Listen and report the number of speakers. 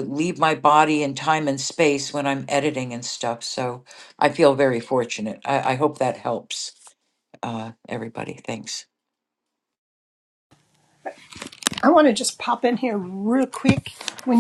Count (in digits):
2